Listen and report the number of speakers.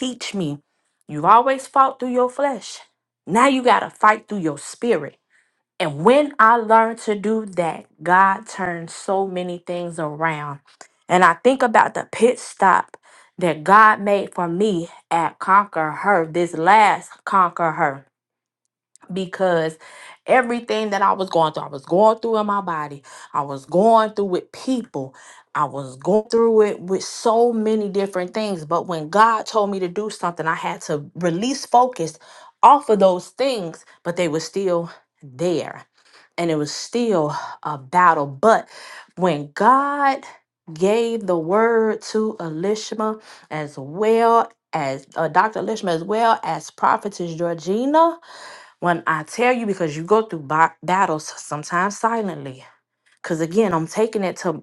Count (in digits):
1